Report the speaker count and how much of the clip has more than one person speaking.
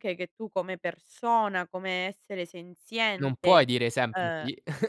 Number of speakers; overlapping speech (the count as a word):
two, about 14%